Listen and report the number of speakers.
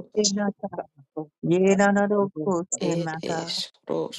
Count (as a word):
two